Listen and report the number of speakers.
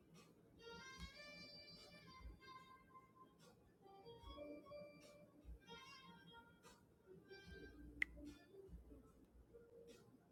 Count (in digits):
0